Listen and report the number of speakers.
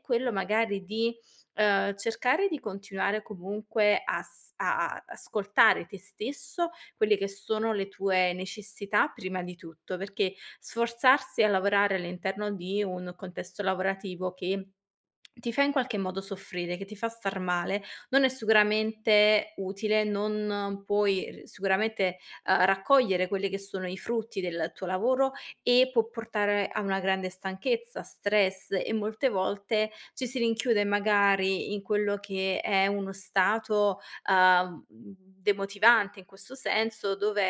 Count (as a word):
one